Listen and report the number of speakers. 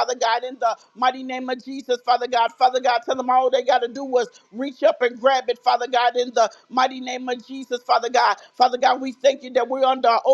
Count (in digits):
1